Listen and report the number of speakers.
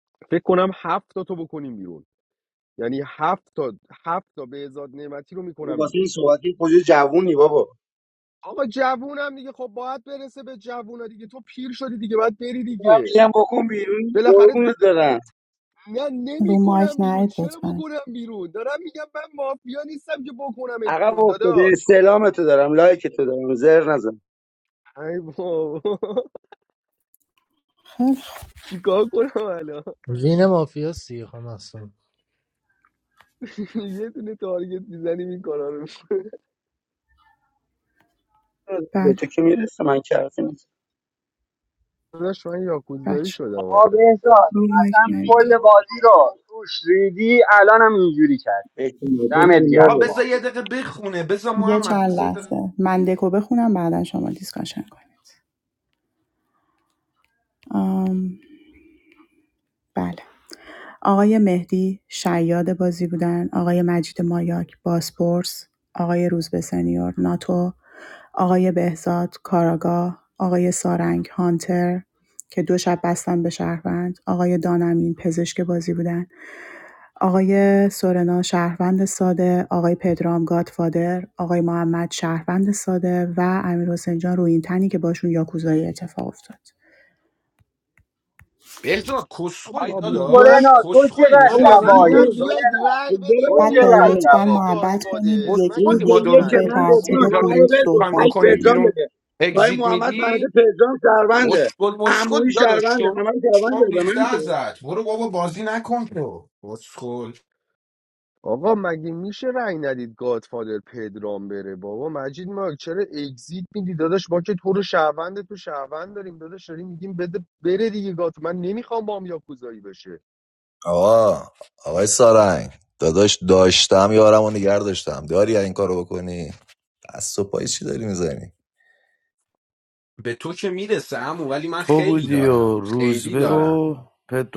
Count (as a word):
eight